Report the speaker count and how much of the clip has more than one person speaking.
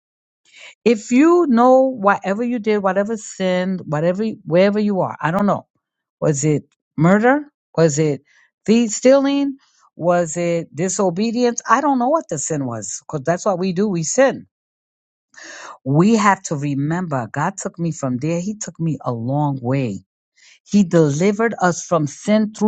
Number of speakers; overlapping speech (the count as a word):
one, no overlap